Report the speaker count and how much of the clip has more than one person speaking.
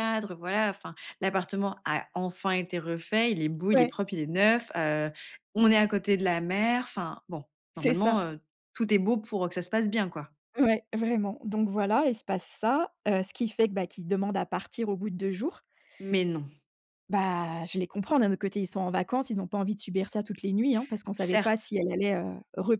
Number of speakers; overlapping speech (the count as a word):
two, about 4%